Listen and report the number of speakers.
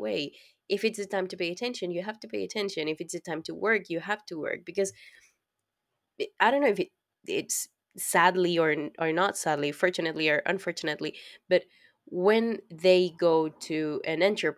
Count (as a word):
one